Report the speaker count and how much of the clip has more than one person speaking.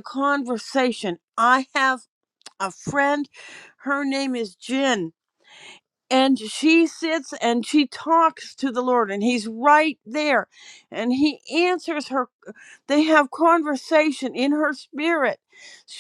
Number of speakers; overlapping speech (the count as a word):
one, no overlap